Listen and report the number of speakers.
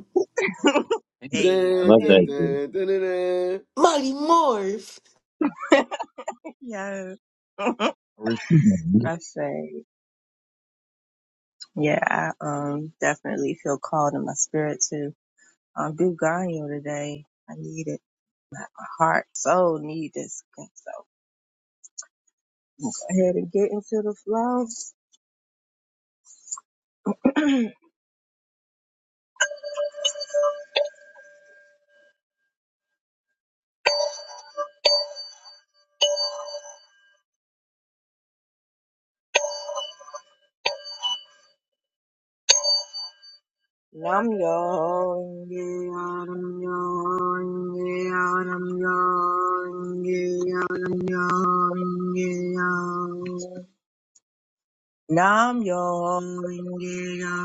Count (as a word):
four